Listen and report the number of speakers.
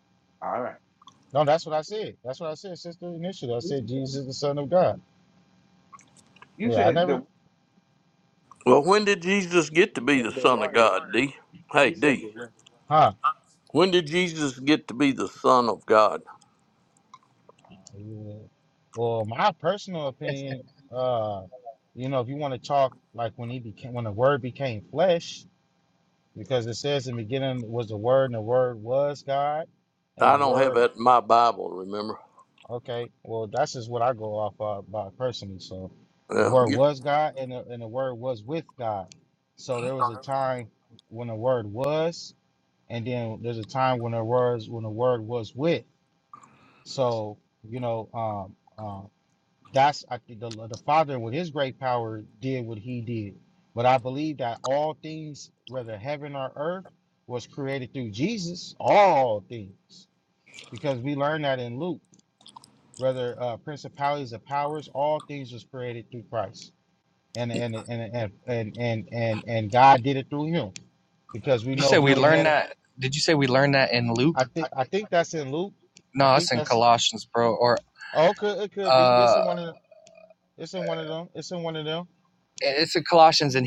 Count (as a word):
four